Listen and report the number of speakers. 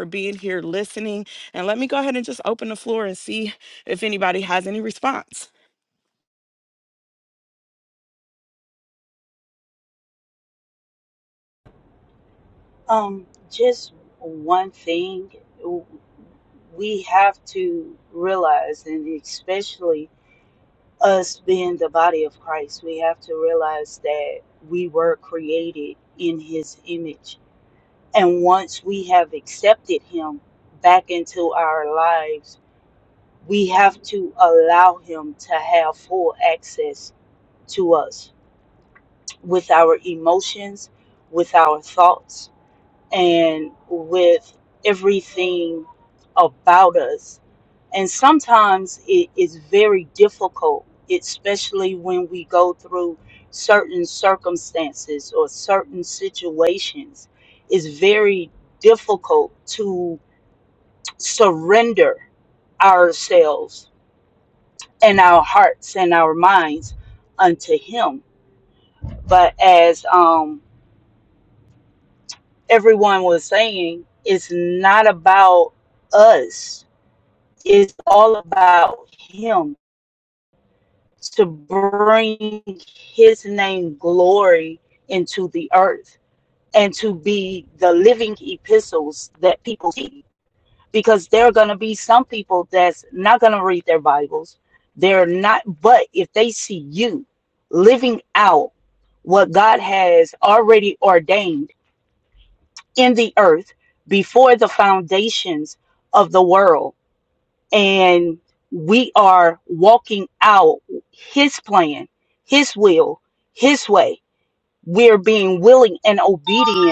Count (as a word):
two